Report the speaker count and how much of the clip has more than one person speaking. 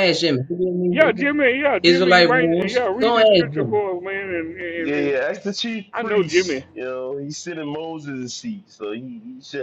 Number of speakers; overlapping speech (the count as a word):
three, about 32%